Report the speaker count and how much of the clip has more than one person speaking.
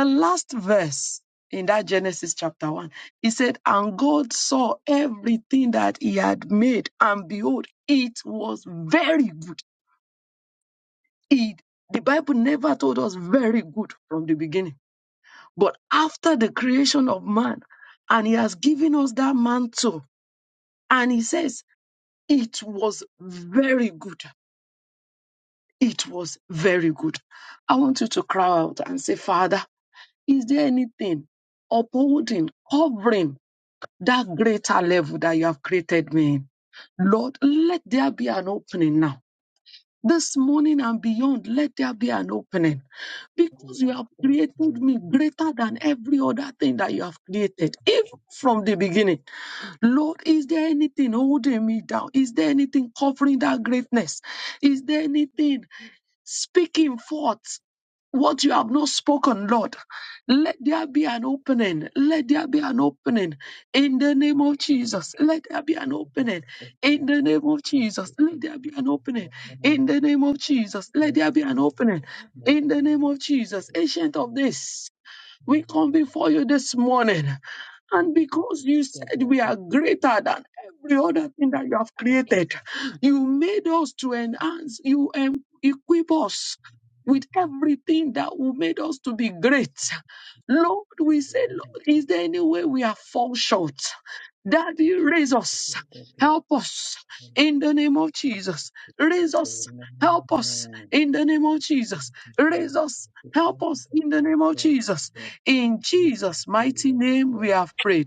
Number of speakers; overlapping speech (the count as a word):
two, about 8%